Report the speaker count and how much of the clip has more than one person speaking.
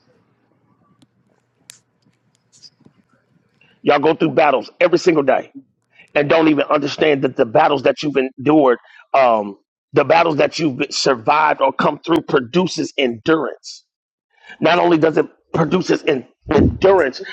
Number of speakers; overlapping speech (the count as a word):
one, no overlap